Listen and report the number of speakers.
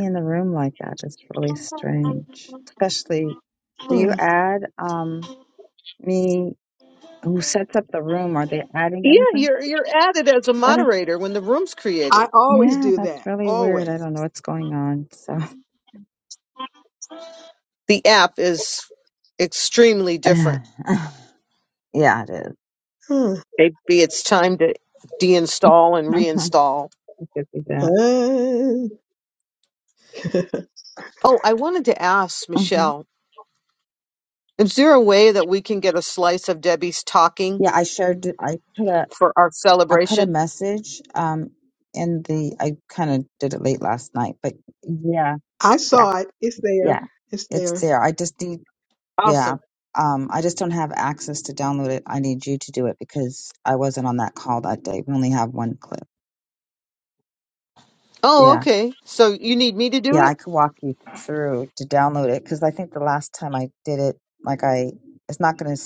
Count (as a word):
three